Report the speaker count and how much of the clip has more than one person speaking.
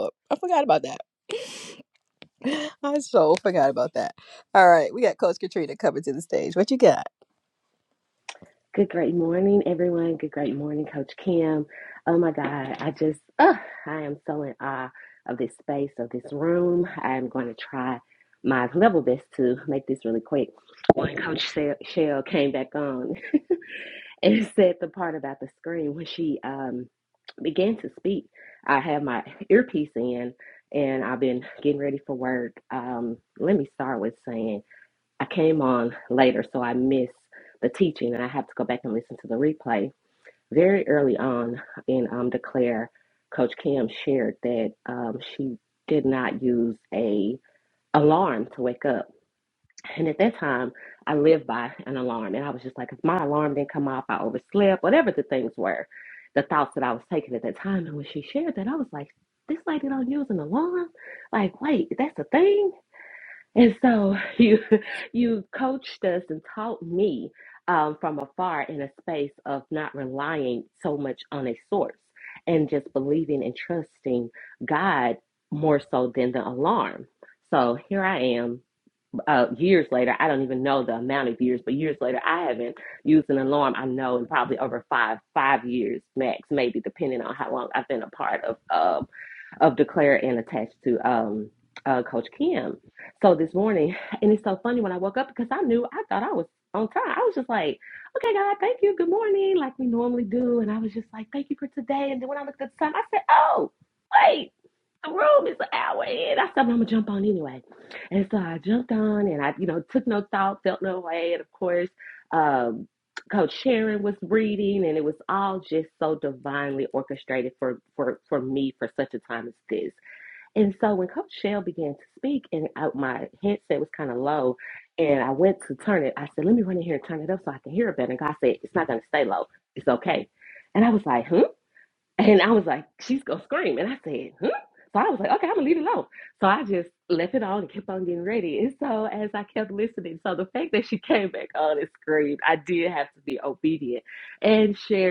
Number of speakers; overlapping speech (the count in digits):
2, no overlap